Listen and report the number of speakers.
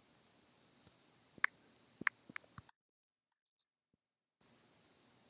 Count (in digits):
0